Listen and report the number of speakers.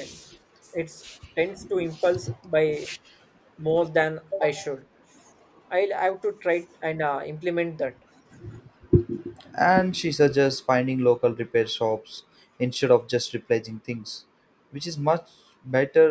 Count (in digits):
2